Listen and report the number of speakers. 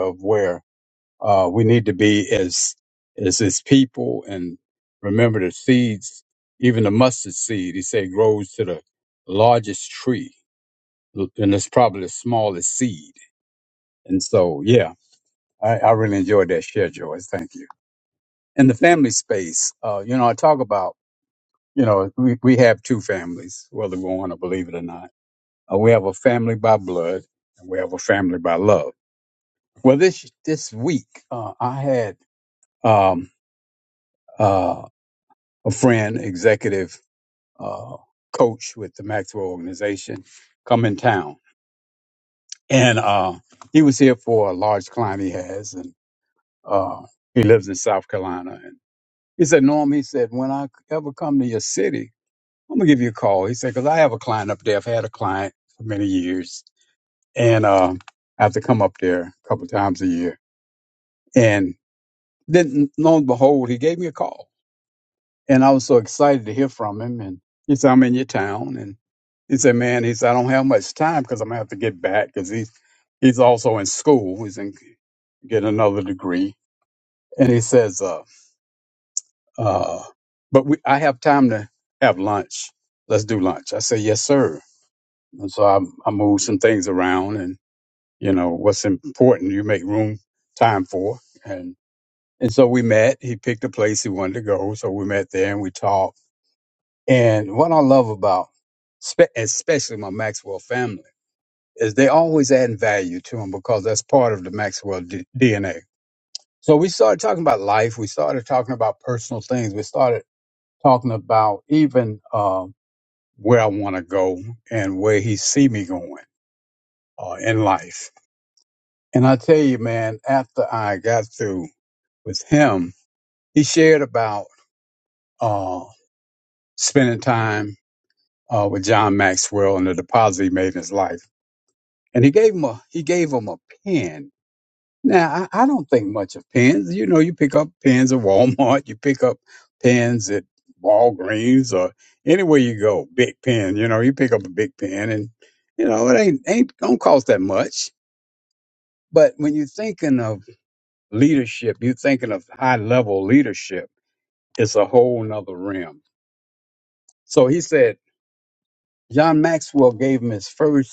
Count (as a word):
one